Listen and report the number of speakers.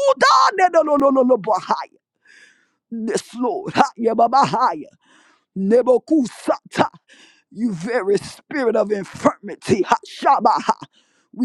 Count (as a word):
one